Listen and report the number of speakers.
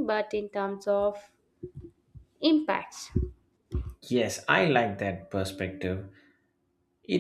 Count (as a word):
two